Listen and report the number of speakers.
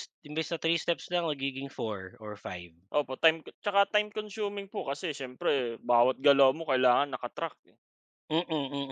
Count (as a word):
two